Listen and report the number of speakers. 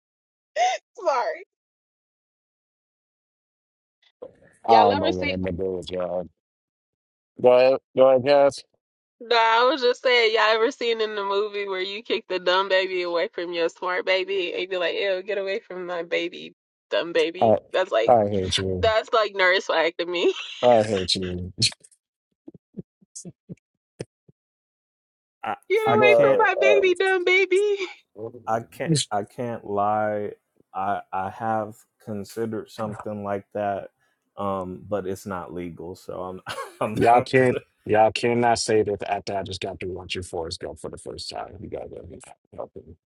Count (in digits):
3